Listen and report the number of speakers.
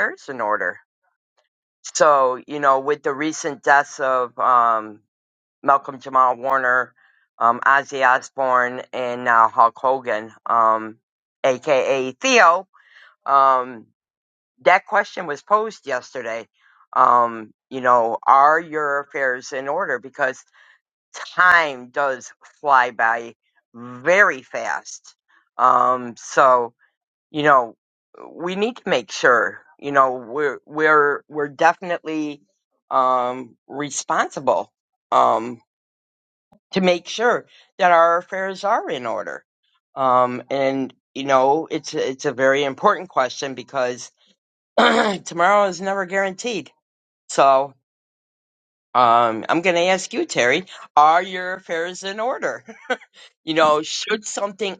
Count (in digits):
1